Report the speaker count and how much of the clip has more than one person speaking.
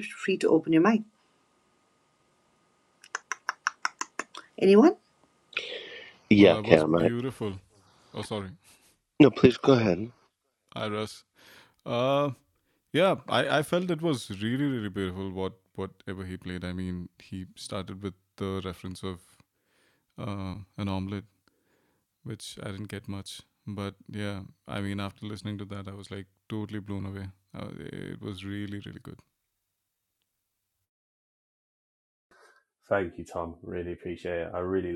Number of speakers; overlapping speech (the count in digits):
4, about 2%